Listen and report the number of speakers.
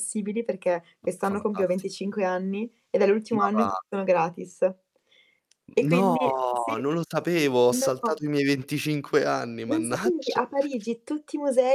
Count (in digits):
2